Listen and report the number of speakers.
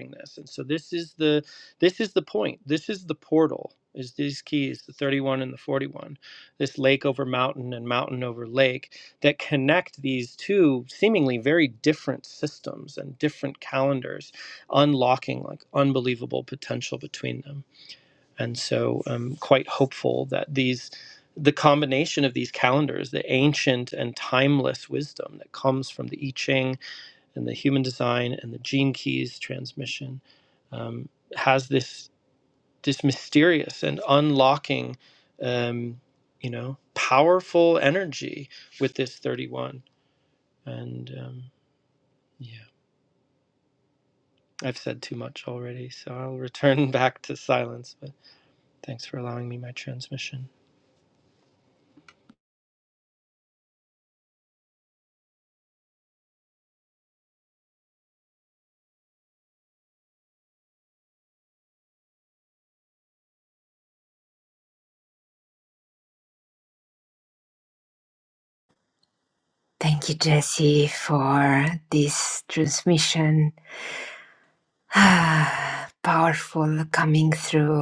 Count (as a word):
two